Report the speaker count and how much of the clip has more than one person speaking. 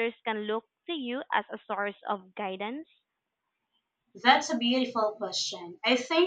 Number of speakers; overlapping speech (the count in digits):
2, no overlap